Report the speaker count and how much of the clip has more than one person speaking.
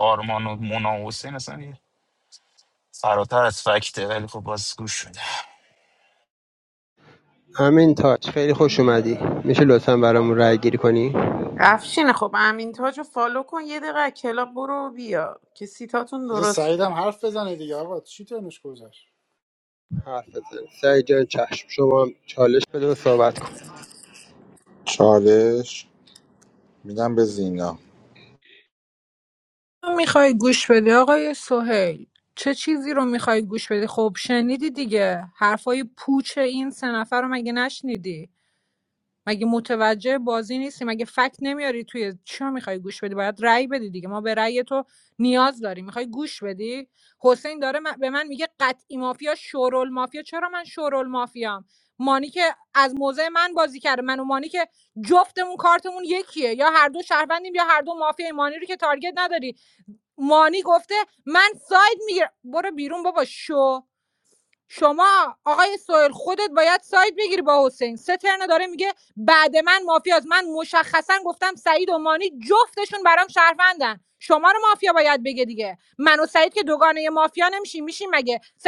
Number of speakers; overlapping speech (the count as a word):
six, about 1%